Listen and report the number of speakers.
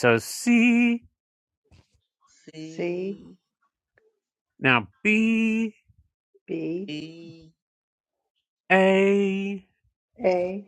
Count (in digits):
3